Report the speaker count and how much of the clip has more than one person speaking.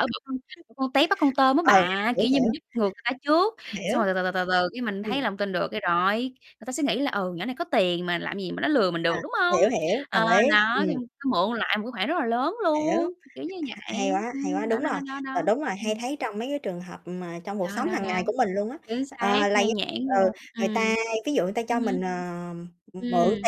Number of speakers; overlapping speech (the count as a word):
two, about 32%